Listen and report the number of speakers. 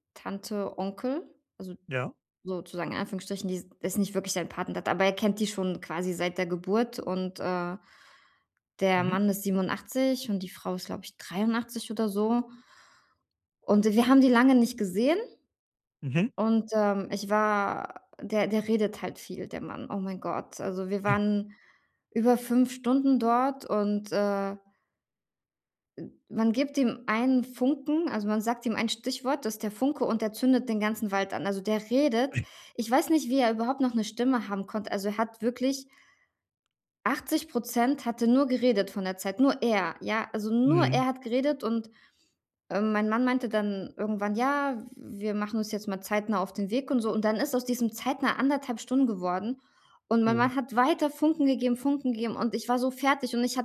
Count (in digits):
2